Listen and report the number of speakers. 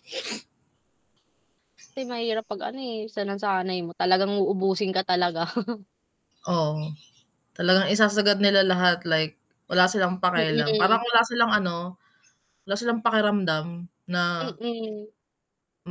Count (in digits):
2